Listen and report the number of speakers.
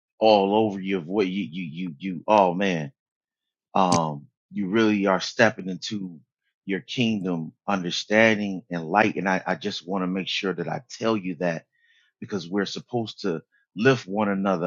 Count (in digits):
1